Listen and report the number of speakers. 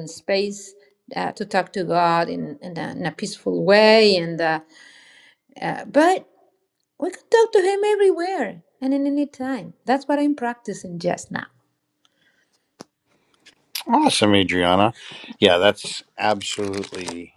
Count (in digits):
2